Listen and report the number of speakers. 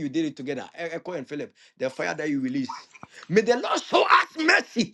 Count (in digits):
1